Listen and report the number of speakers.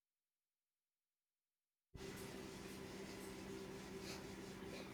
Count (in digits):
0